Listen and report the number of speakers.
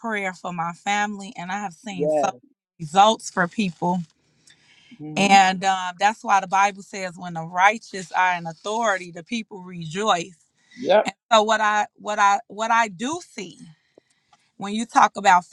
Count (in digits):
2